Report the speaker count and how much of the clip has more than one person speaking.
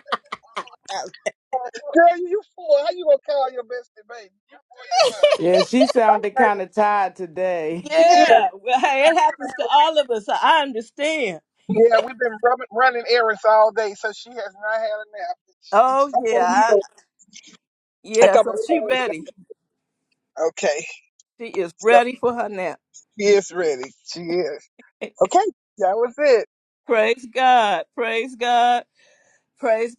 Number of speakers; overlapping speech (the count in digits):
3, about 8%